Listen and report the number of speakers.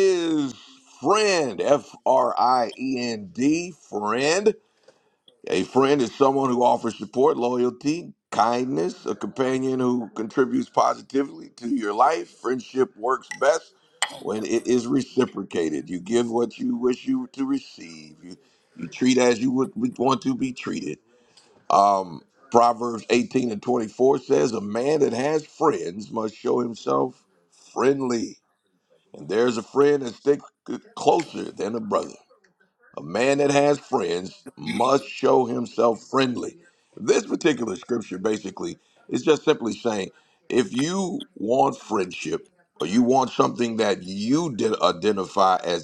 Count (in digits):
1